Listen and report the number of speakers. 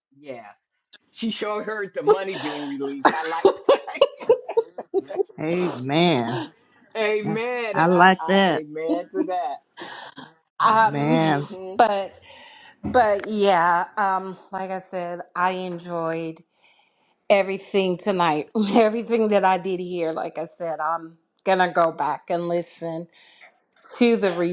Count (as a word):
three